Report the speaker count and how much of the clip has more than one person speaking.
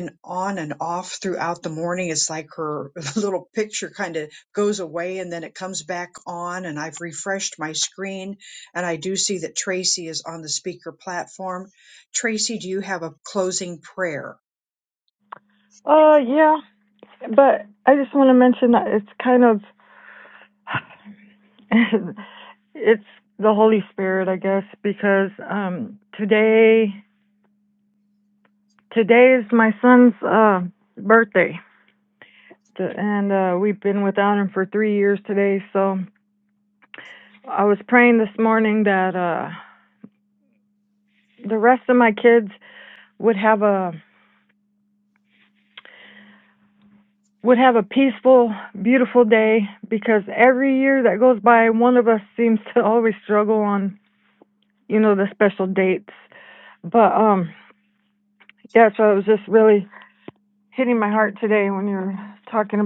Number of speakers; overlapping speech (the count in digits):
2, no overlap